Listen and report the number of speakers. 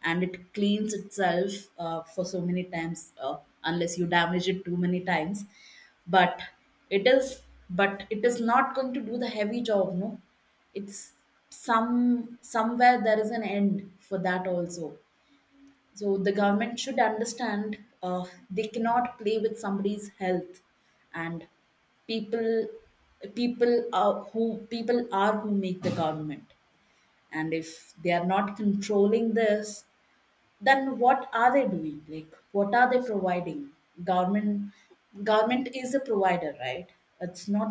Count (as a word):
one